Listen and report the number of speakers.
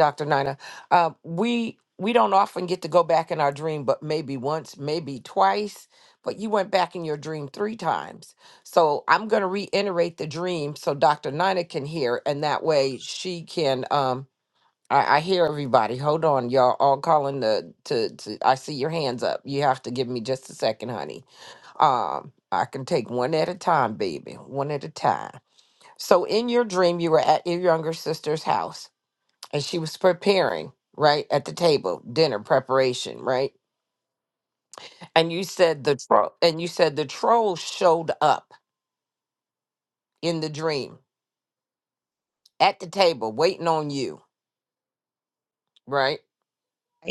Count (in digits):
1